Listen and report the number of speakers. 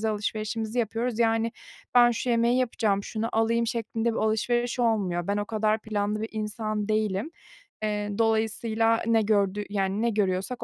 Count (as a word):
one